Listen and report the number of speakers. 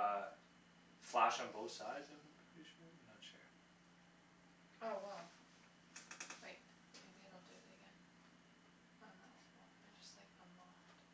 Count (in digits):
2